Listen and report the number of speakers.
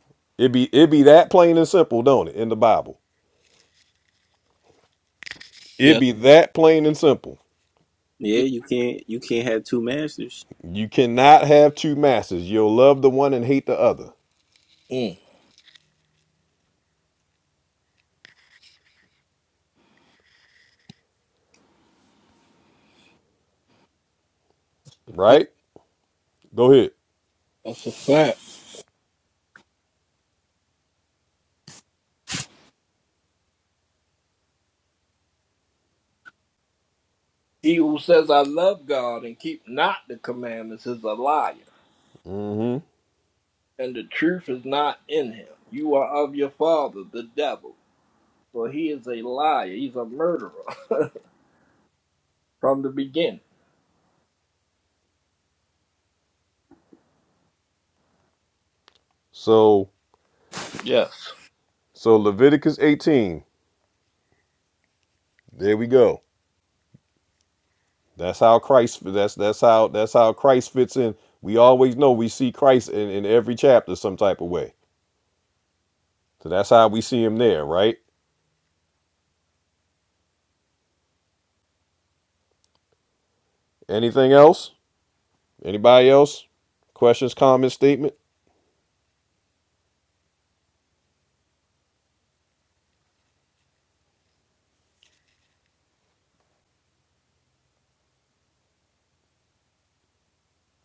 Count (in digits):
3